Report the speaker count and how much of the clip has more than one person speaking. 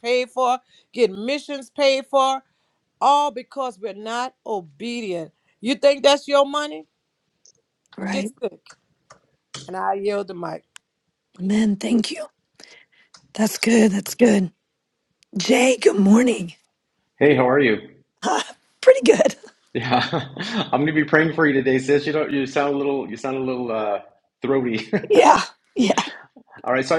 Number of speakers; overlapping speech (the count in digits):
3, about 1%